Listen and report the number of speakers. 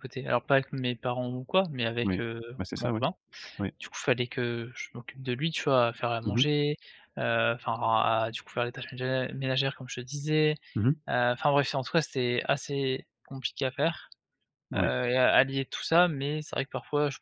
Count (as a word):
two